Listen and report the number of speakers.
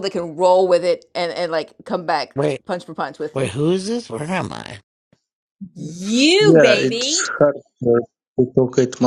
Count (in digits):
3